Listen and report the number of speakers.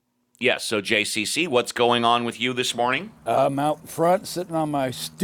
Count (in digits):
2